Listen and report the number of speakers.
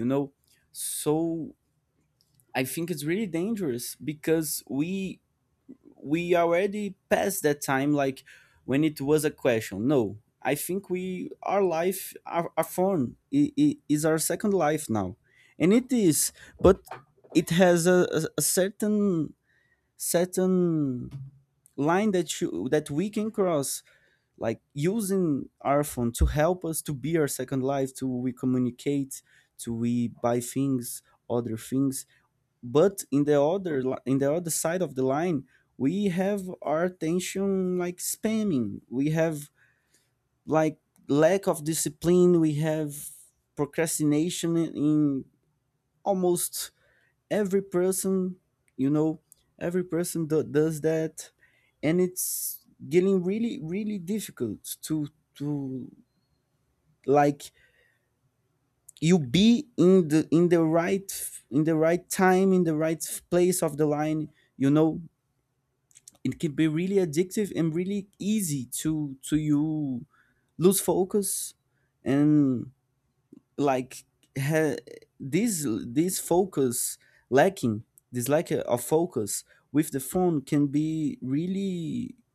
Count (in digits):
1